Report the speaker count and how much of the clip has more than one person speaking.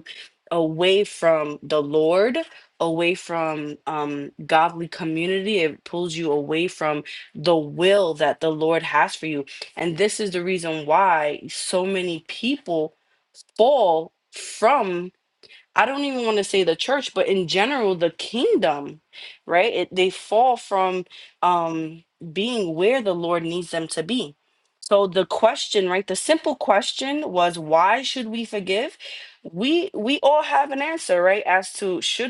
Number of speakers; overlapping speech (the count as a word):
one, no overlap